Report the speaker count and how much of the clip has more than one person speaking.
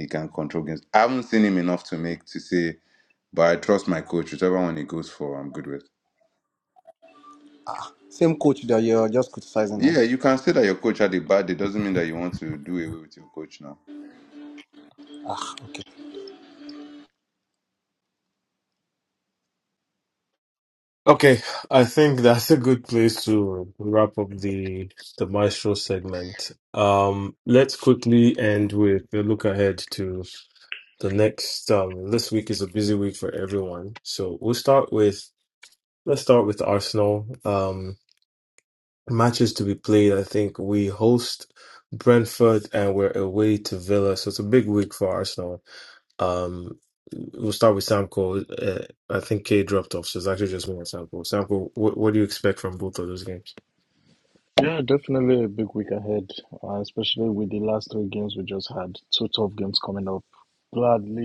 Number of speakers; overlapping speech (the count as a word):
four, under 1%